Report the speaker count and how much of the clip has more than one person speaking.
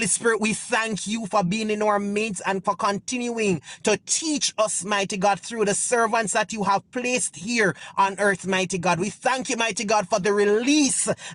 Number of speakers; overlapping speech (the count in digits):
1, no overlap